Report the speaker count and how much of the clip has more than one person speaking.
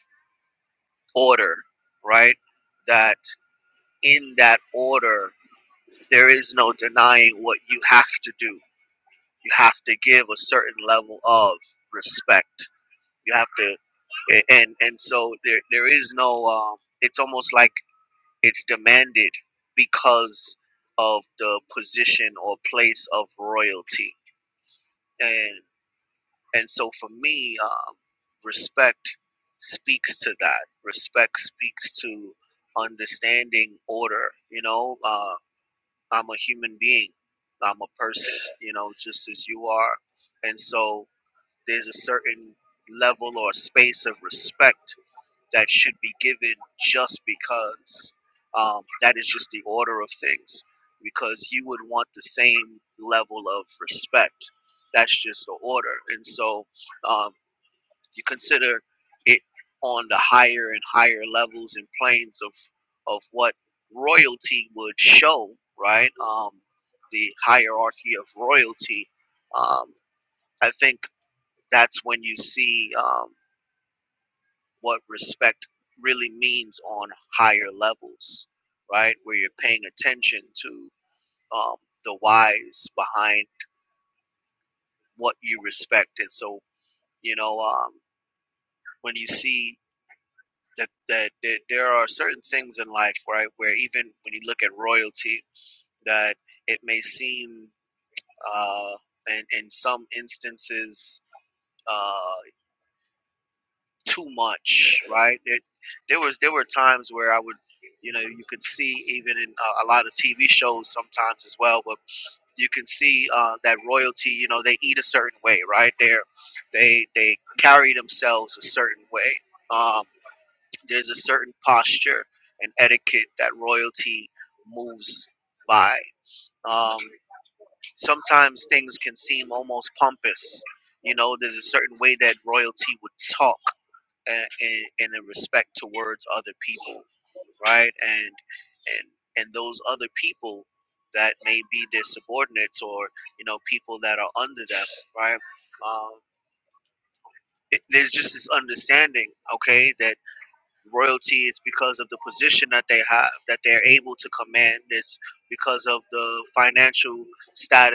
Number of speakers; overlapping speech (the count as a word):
one, no overlap